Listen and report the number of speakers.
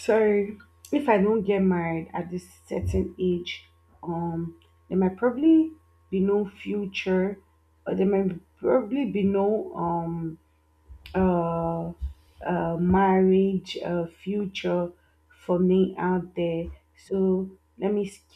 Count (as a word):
one